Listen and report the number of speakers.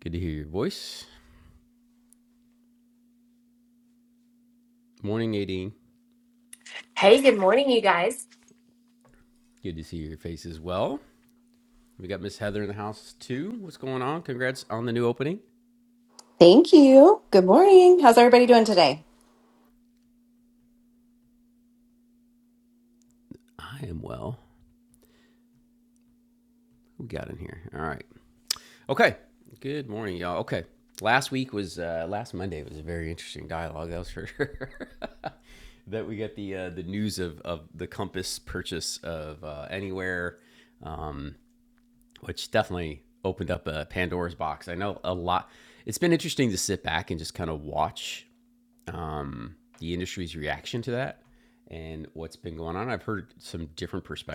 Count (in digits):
3